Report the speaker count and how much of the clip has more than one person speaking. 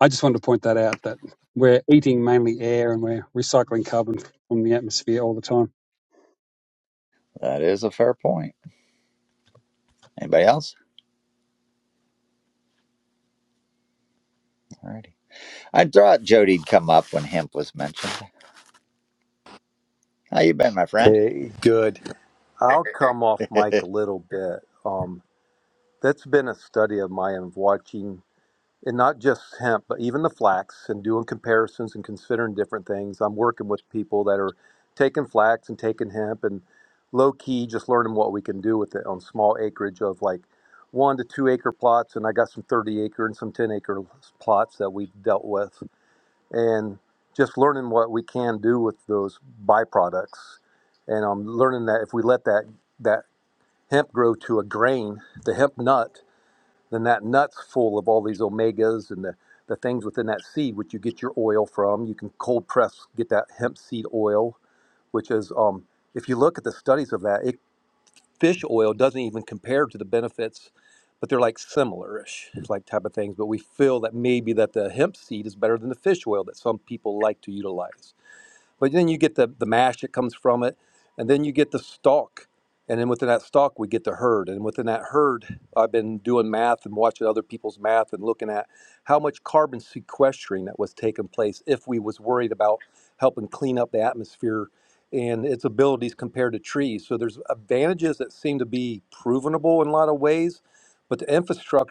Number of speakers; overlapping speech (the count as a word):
three, under 1%